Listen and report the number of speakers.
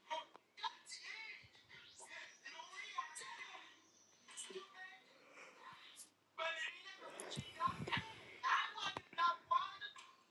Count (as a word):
zero